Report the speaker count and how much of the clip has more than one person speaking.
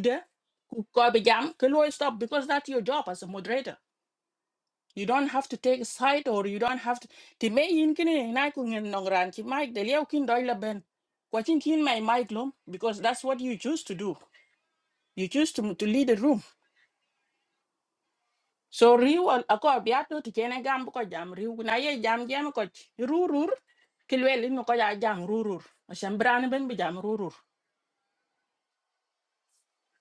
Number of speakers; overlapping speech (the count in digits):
1, no overlap